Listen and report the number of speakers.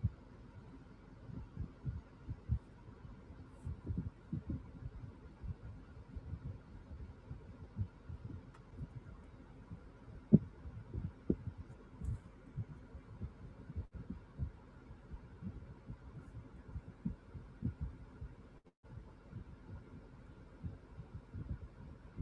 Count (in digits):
0